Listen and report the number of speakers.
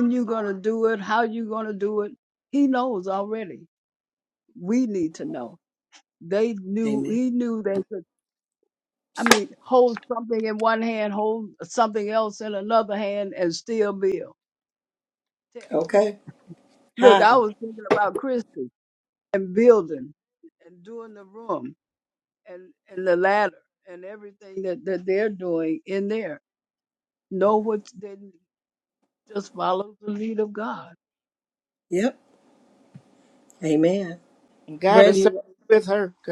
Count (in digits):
3